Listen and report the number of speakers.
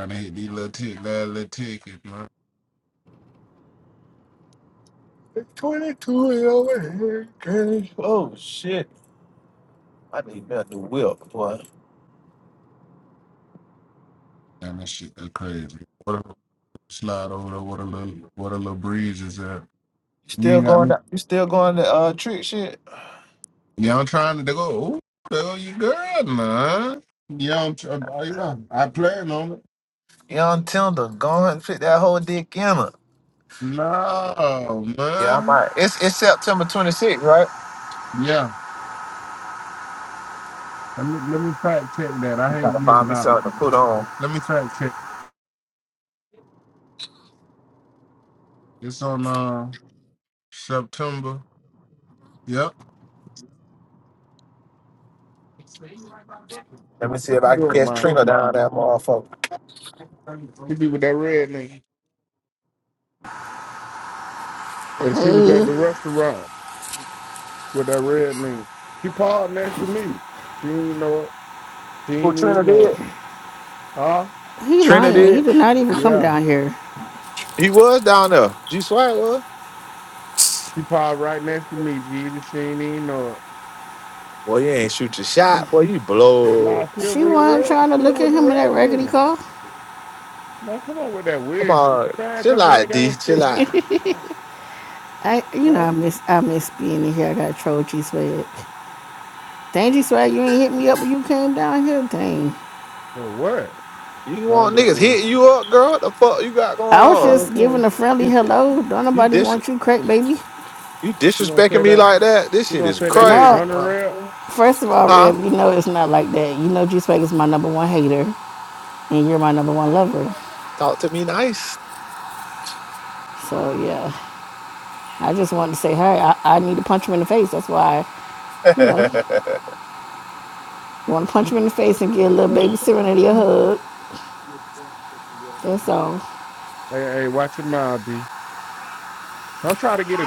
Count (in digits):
3